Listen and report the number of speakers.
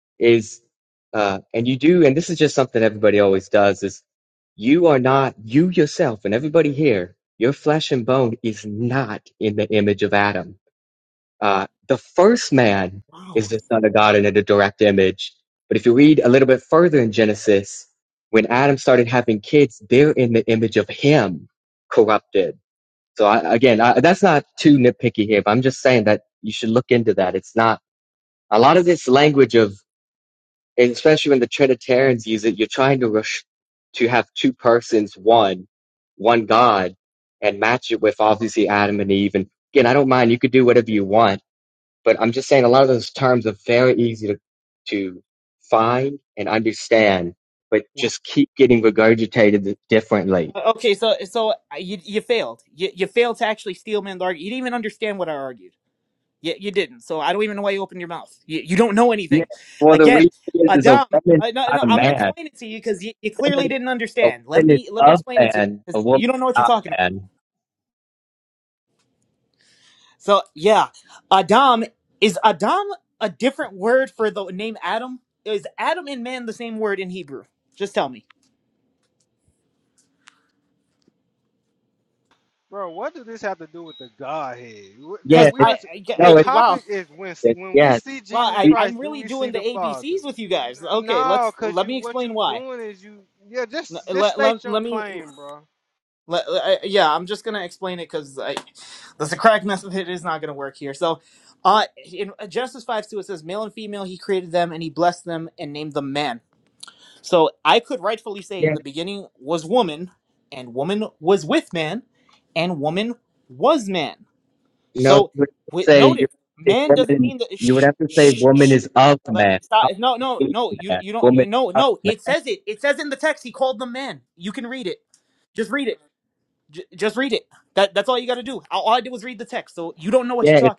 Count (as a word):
three